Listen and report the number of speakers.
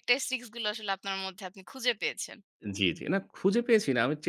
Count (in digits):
2